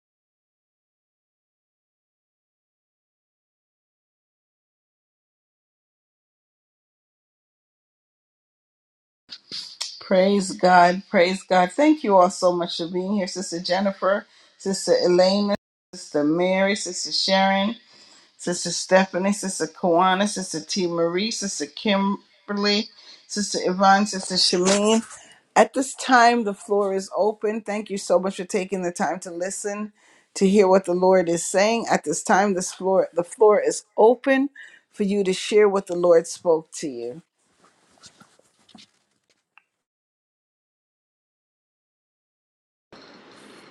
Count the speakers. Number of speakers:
one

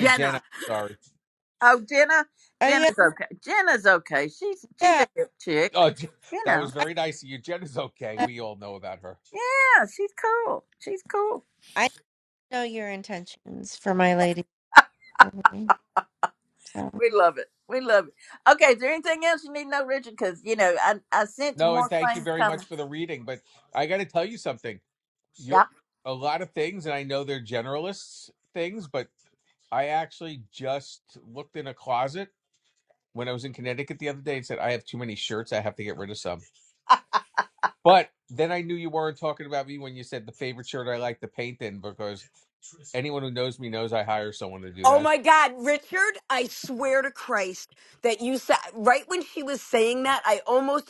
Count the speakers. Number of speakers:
four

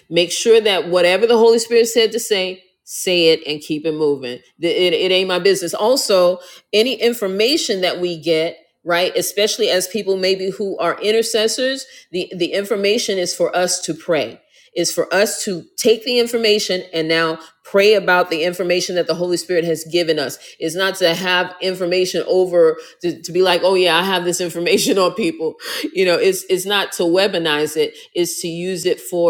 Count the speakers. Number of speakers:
one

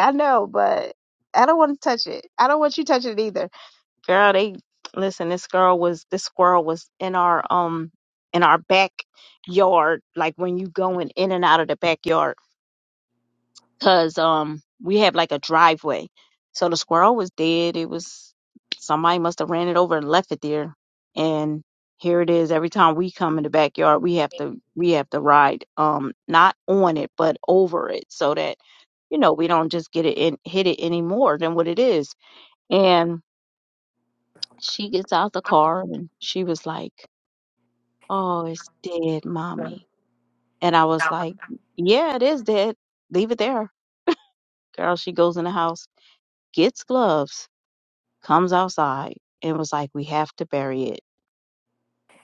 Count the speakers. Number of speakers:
one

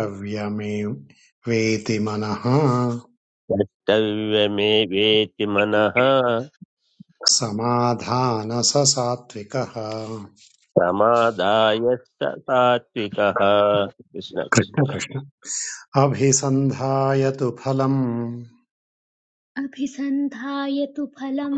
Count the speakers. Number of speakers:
three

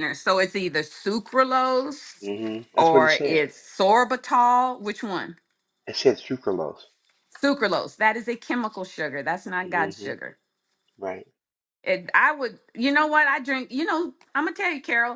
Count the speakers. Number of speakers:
two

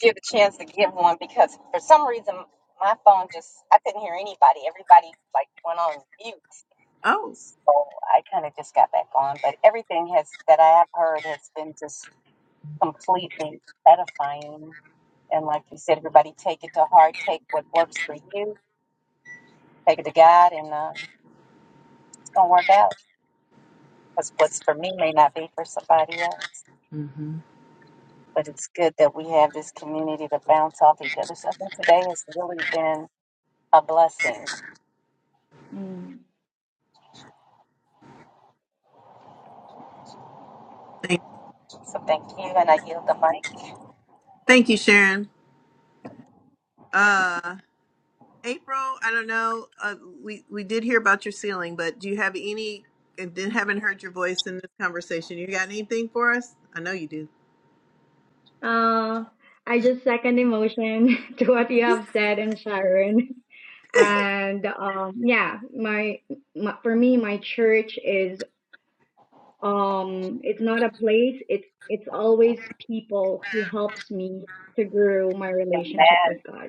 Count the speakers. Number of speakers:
three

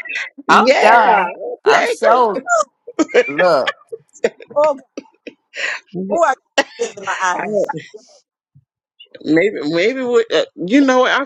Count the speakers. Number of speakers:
three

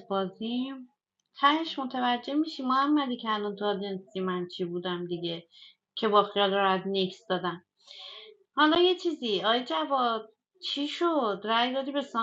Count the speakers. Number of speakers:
one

